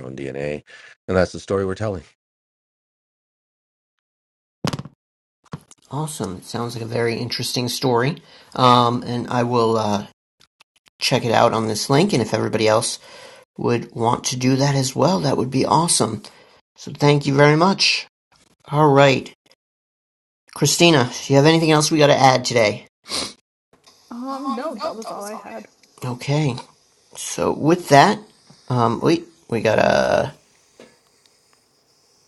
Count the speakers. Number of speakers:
three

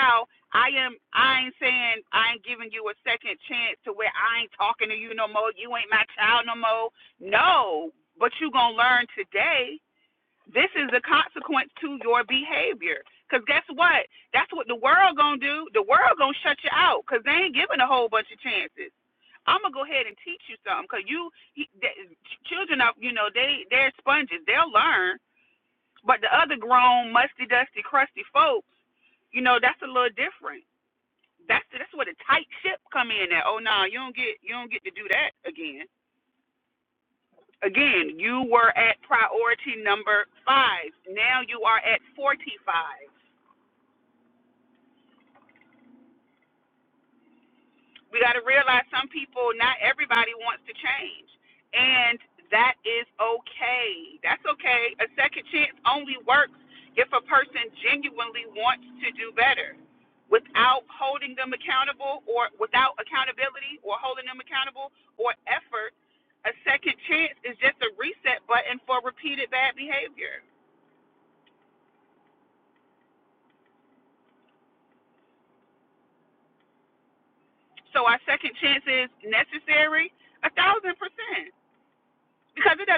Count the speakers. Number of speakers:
one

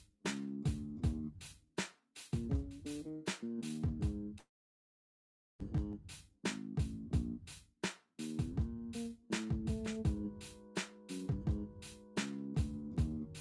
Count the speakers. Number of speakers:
zero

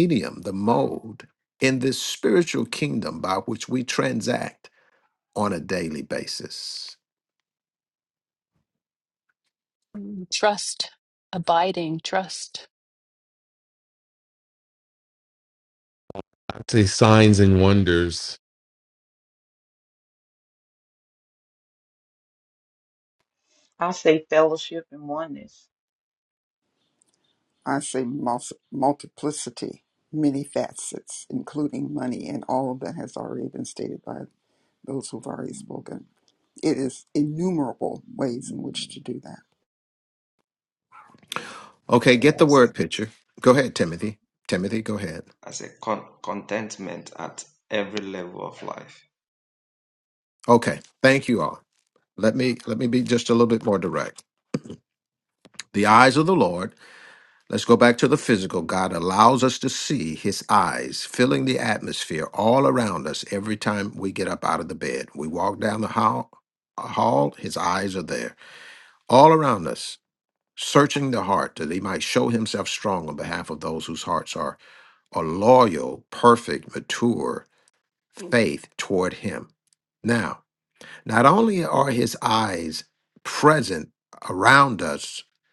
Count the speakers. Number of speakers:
six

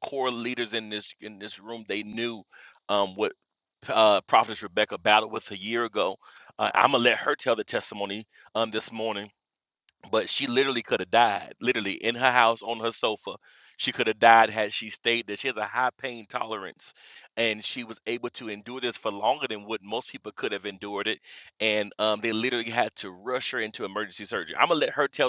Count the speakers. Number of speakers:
one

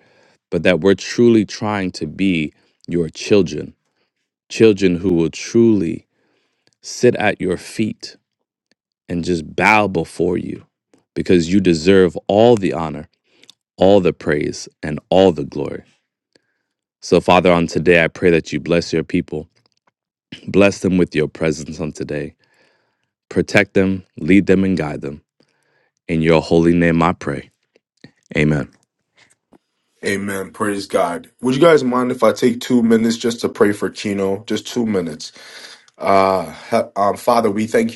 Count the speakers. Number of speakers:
two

